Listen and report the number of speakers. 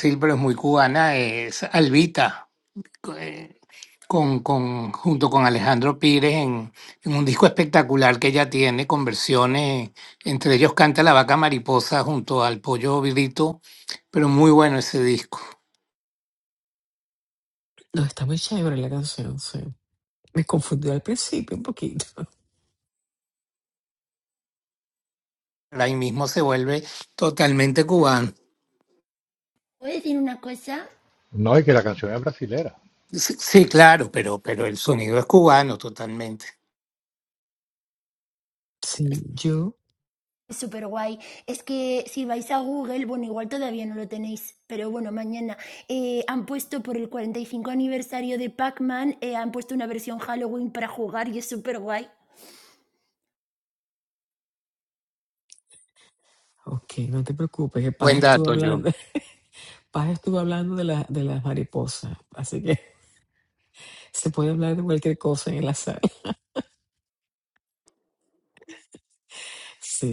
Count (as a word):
four